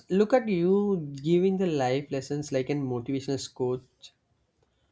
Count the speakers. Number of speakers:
one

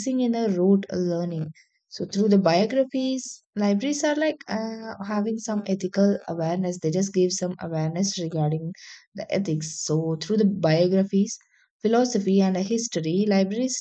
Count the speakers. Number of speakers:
one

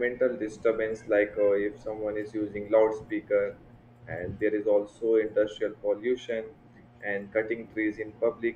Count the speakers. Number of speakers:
one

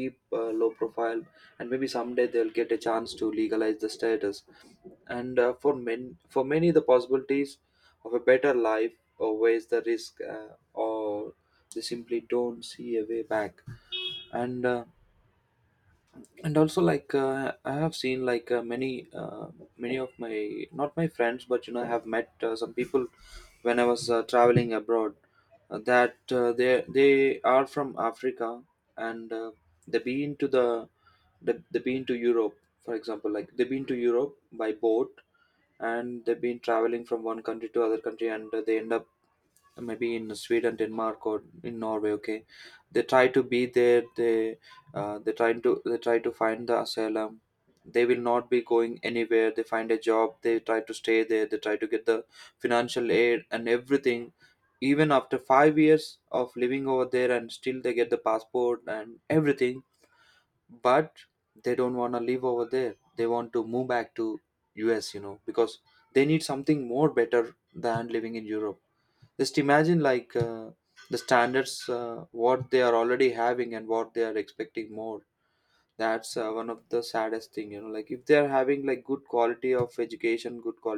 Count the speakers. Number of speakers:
one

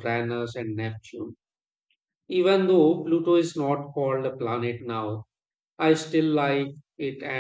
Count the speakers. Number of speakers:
one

